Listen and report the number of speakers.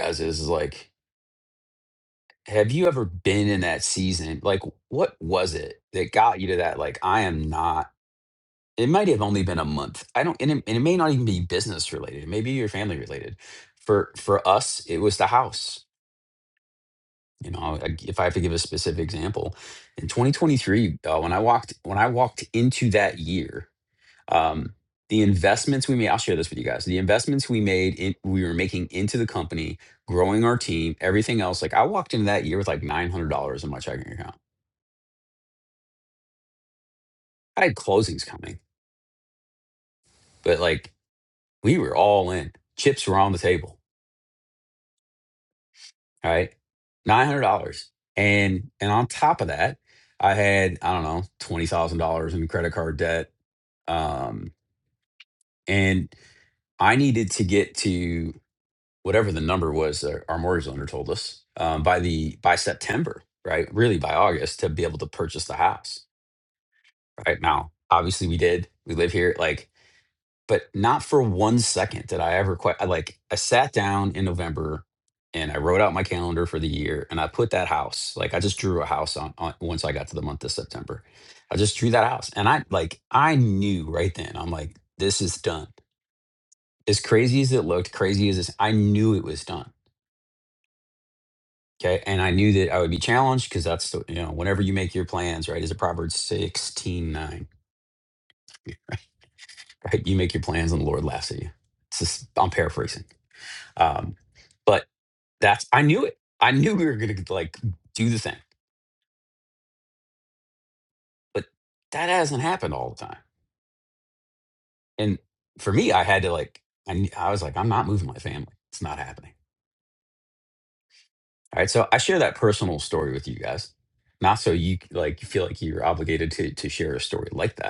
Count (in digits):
1